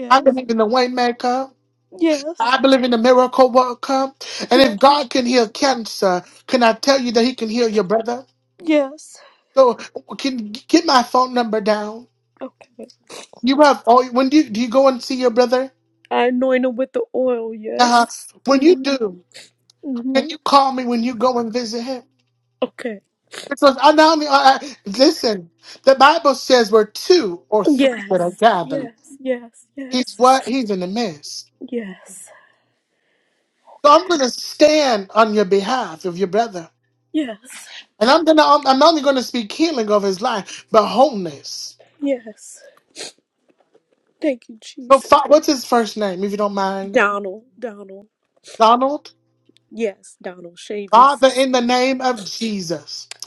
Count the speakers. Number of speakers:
2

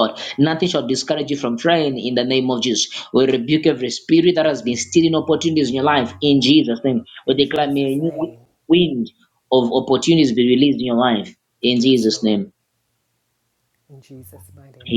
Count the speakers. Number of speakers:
2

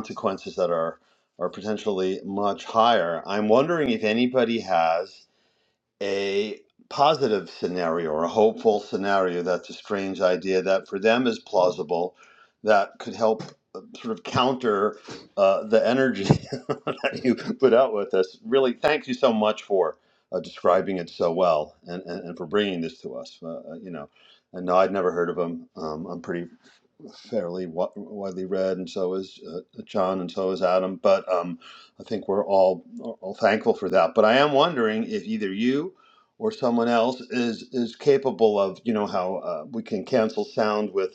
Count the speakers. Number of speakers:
1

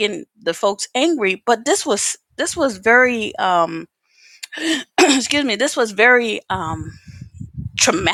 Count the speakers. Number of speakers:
1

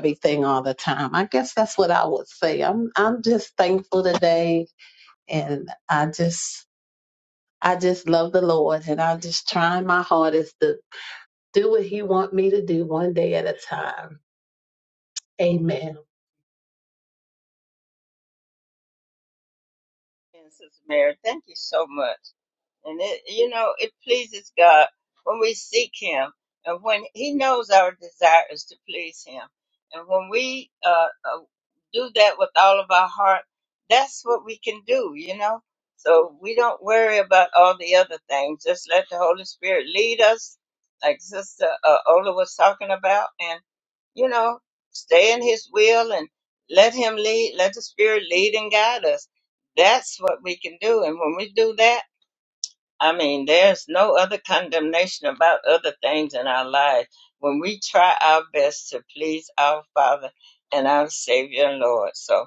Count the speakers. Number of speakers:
2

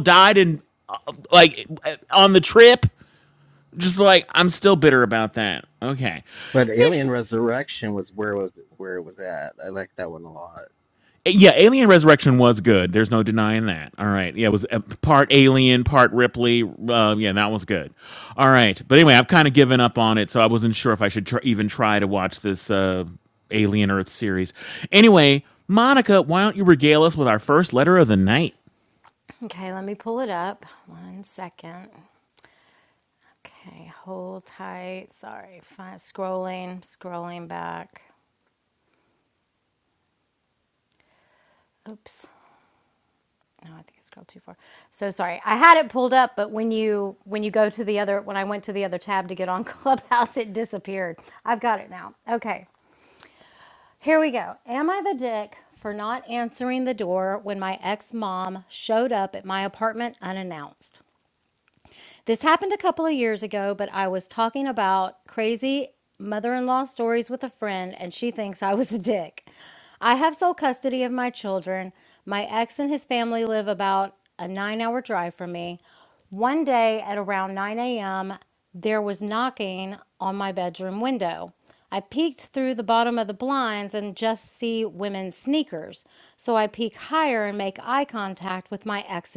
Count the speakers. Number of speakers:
3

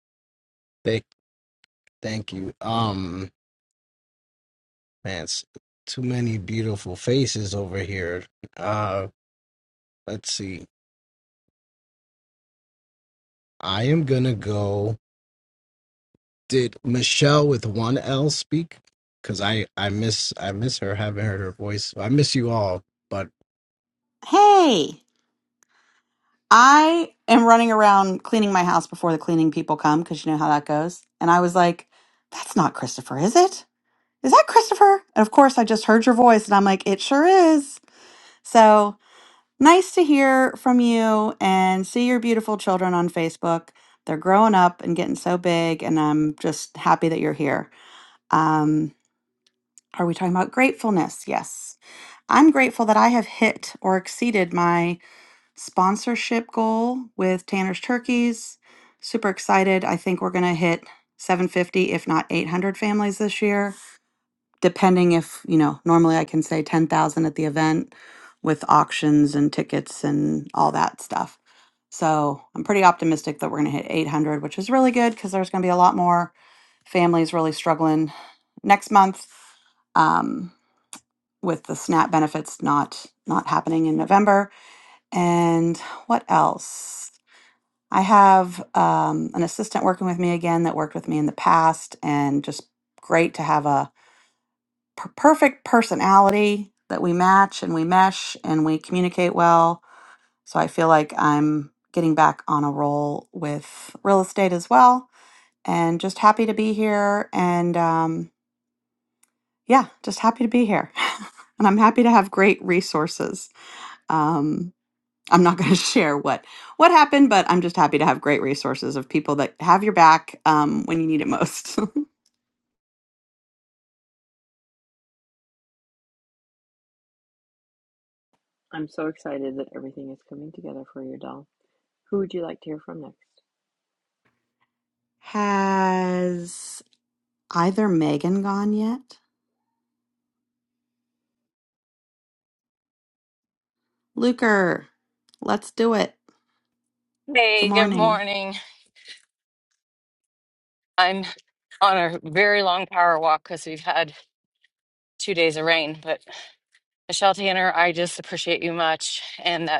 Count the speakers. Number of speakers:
4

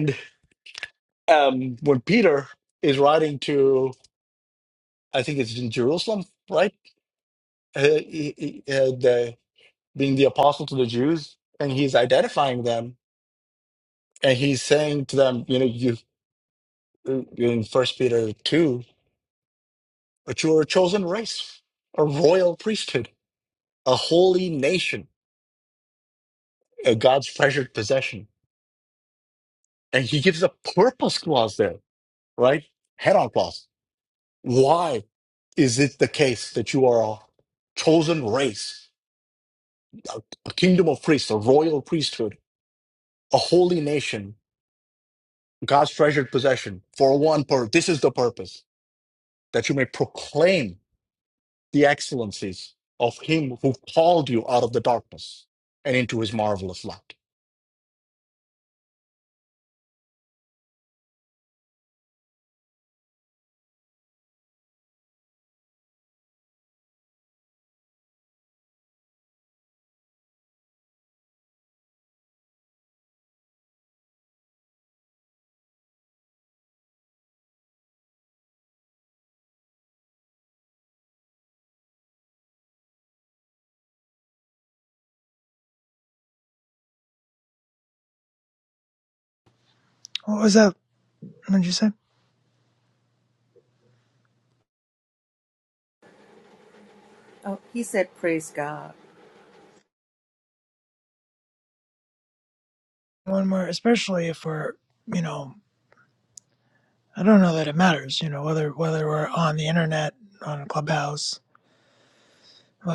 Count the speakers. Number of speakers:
3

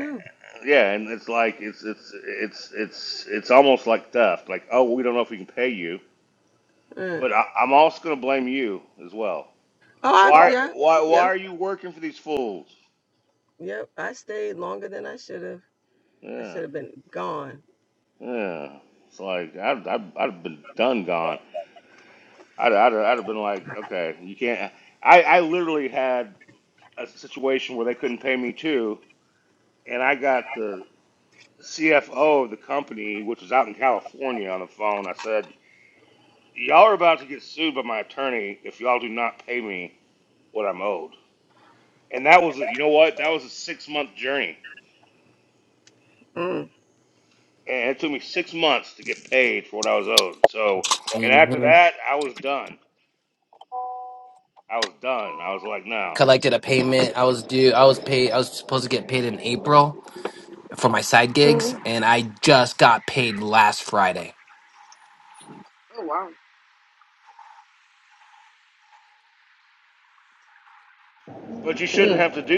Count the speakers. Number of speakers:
3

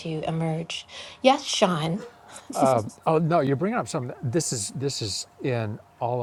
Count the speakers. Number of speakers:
2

